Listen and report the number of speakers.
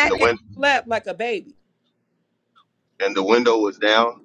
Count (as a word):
two